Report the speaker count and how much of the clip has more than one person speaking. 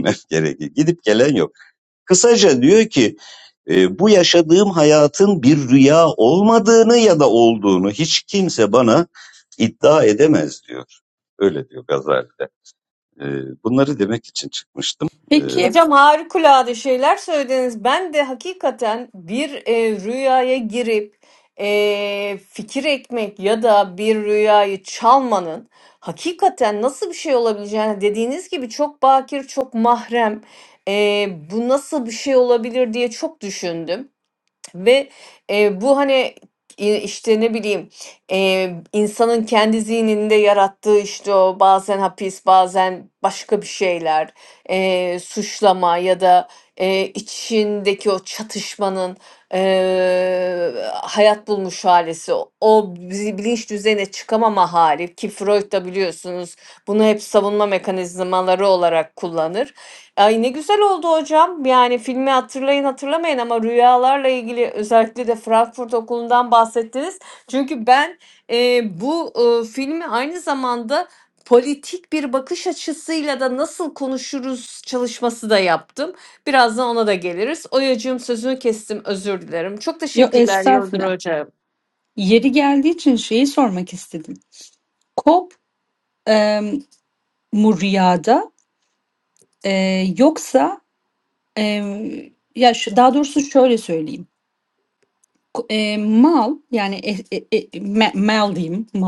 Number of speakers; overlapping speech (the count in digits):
3, about 1%